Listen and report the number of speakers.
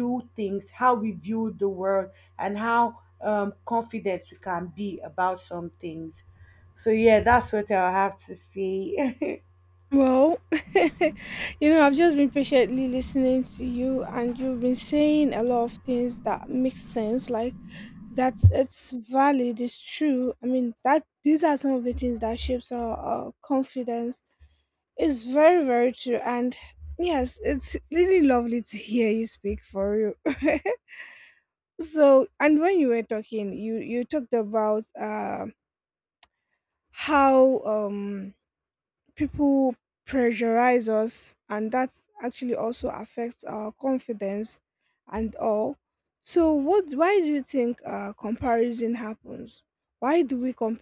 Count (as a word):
two